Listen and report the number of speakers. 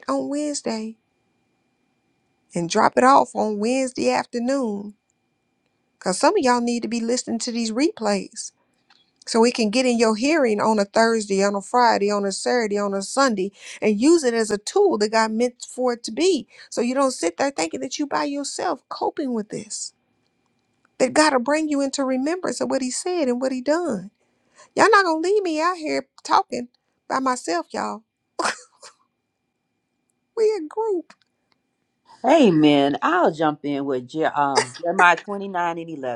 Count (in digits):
2